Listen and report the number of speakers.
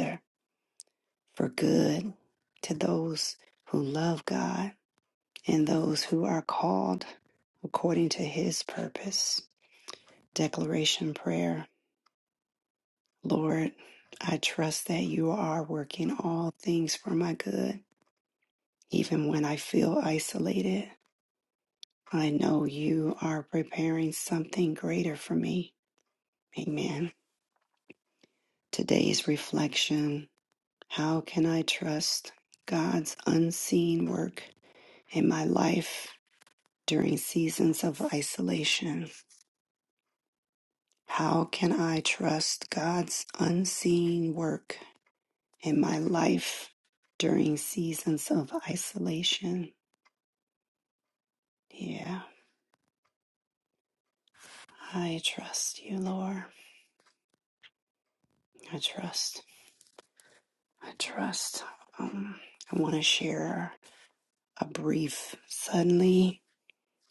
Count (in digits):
1